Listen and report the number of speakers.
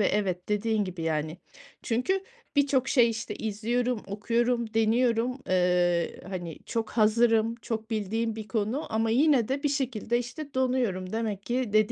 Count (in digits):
1